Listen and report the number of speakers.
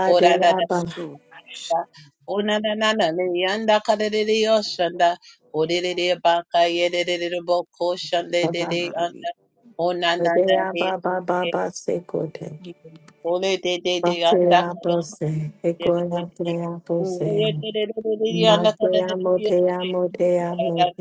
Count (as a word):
three